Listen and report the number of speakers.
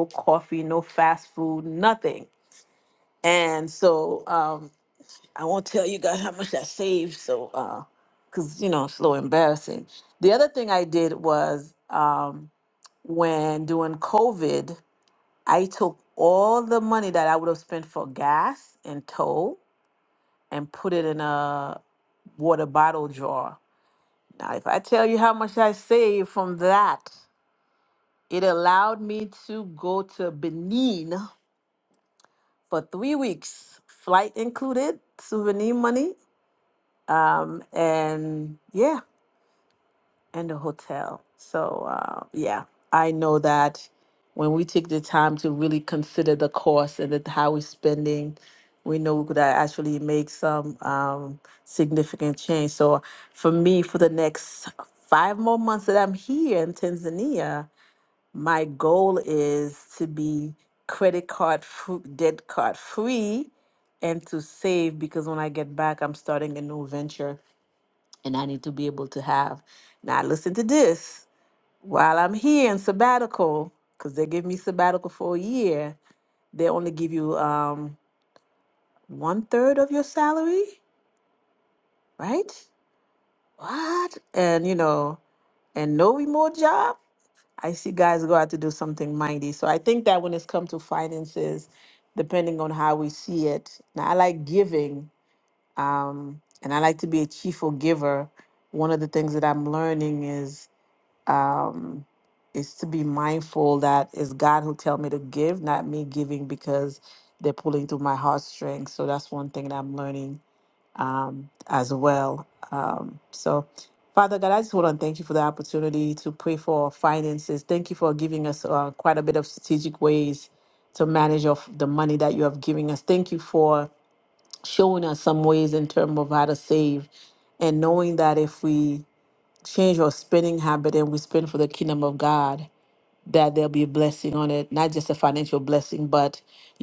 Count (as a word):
one